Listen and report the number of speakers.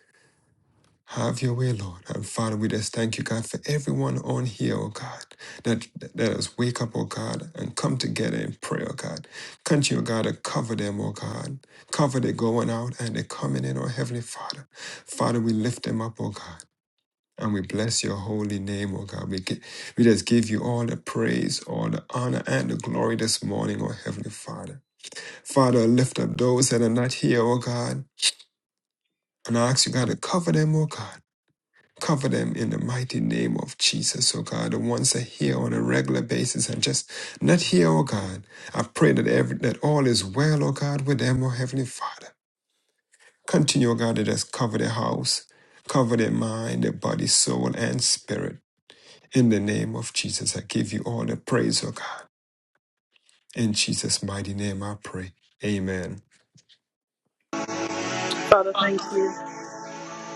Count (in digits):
2